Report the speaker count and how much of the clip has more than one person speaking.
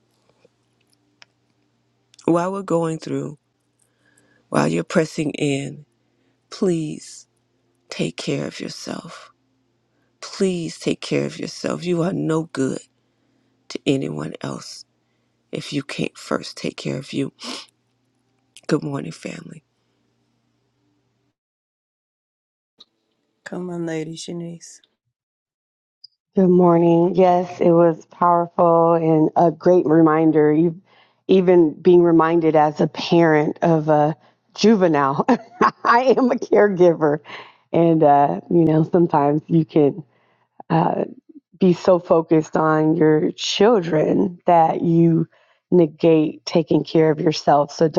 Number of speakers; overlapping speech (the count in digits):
3, no overlap